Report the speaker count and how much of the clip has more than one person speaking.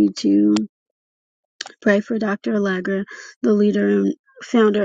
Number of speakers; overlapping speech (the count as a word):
one, no overlap